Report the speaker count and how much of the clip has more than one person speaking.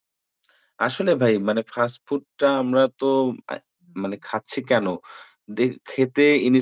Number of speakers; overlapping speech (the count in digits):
1, no overlap